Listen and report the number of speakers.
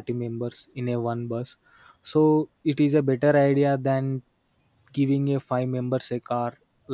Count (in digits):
1